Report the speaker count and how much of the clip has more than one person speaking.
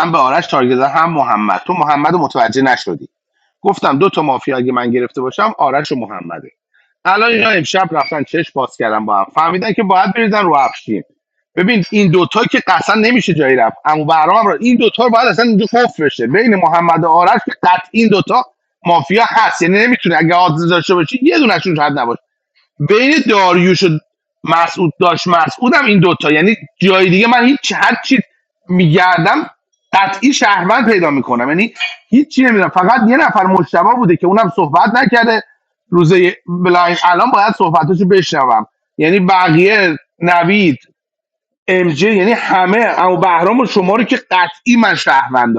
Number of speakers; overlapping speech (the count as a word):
one, no overlap